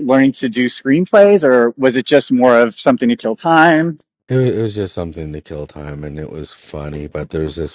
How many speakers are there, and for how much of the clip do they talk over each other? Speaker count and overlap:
2, no overlap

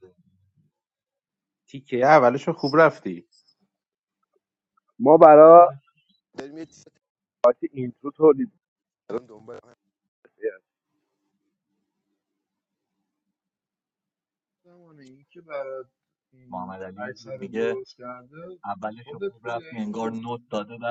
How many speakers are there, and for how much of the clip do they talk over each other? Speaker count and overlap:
4, about 13%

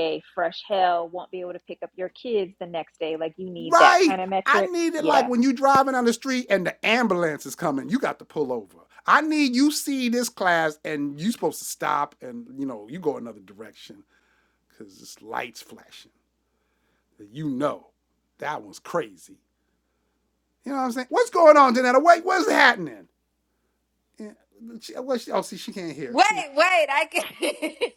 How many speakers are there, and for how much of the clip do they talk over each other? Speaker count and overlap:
3, about 7%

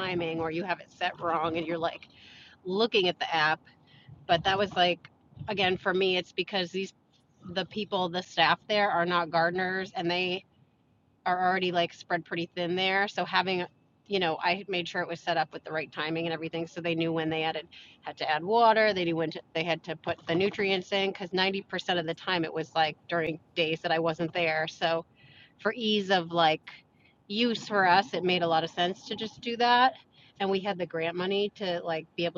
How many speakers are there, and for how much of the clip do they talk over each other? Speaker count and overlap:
1, no overlap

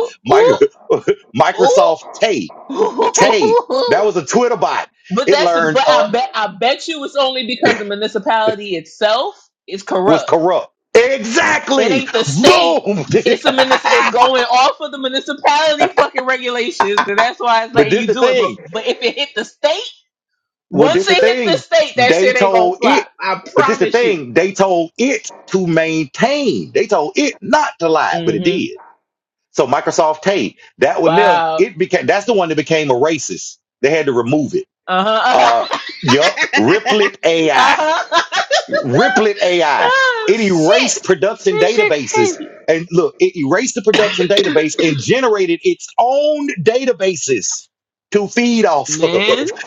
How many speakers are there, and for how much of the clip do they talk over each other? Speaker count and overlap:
2, about 20%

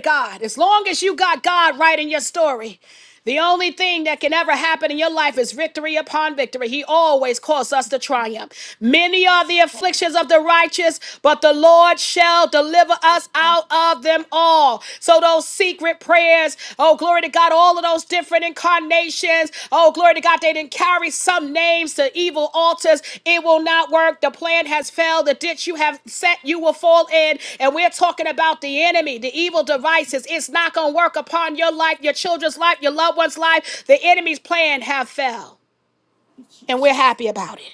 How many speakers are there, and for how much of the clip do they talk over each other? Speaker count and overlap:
1, no overlap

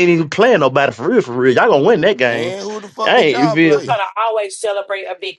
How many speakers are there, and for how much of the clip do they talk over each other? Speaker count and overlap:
3, about 21%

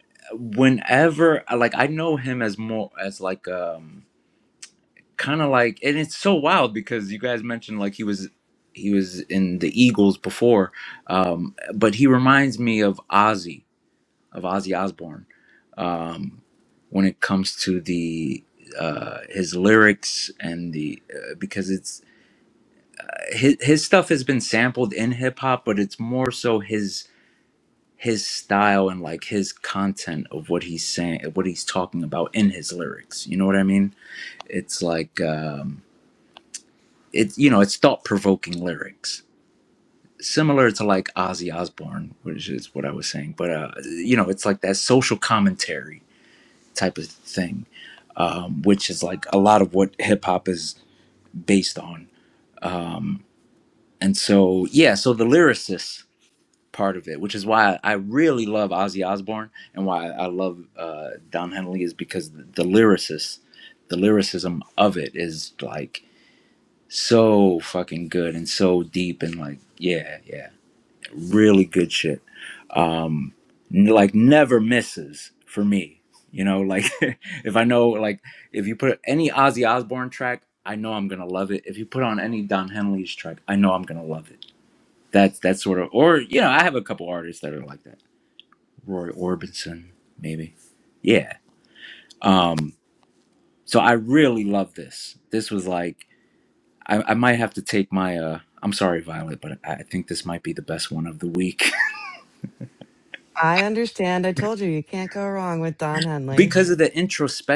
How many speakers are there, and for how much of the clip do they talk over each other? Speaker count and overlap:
2, under 1%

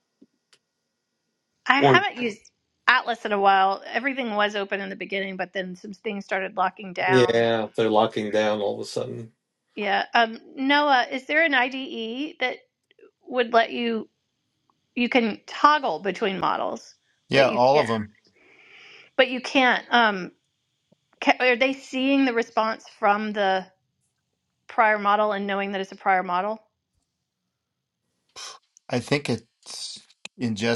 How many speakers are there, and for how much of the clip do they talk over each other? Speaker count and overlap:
3, about 4%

